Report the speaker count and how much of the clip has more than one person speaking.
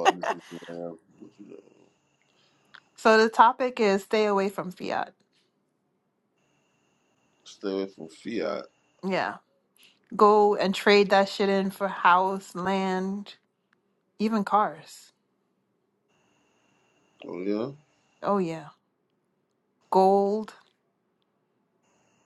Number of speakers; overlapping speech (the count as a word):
two, no overlap